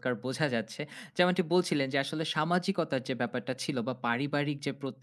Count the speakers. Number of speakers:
1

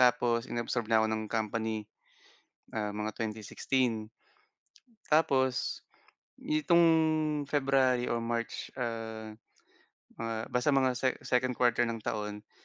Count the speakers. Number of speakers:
1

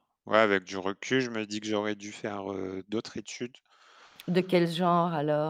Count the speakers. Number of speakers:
2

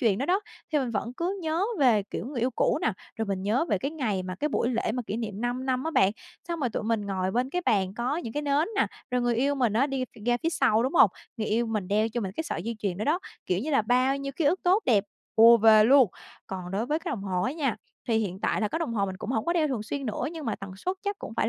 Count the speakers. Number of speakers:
1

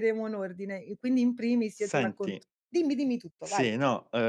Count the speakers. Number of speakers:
2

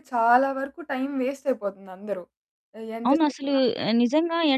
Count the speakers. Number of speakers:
2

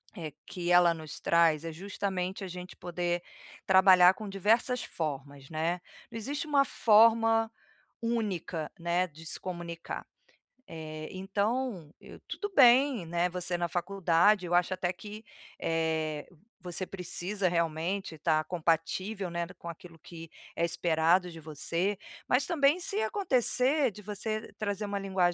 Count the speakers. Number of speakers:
1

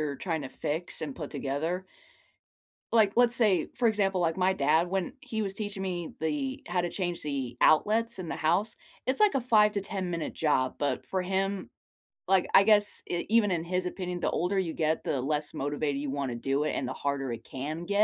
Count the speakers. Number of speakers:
1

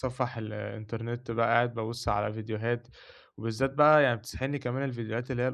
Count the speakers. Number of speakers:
1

